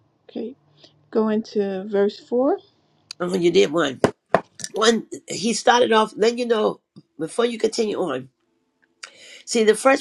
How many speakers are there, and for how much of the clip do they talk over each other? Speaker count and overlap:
two, no overlap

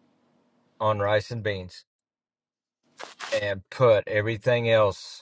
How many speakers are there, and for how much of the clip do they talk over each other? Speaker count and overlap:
one, no overlap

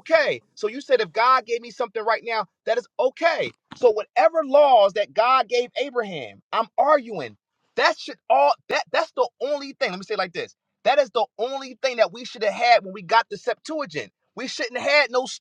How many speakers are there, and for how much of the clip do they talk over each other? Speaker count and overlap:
one, no overlap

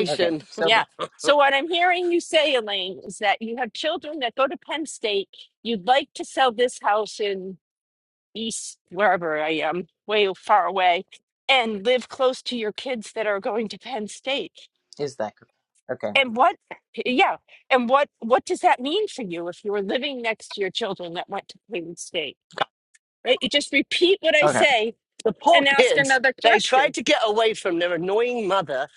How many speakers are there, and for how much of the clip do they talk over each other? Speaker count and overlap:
three, about 6%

